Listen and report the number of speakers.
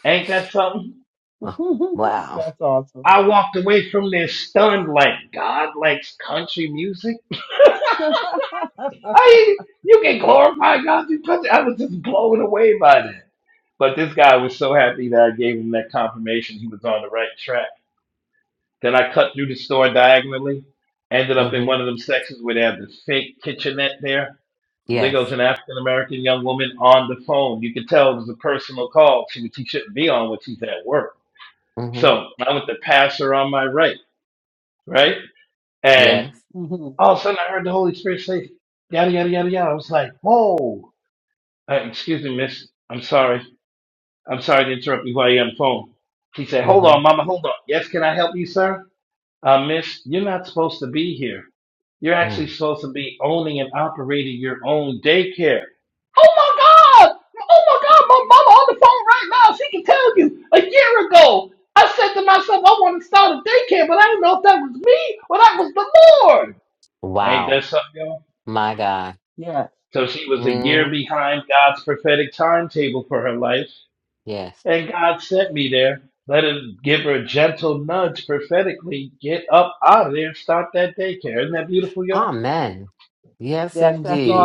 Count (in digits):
3